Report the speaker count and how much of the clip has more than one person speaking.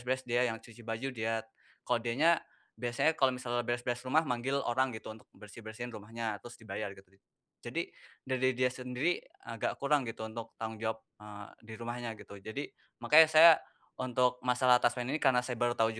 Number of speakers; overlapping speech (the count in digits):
1, no overlap